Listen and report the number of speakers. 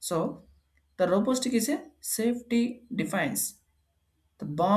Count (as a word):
one